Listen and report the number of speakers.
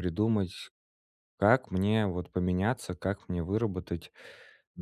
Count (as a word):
one